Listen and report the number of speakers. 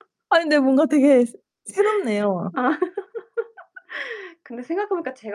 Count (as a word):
two